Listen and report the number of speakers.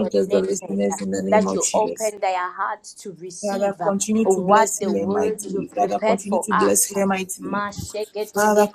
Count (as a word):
two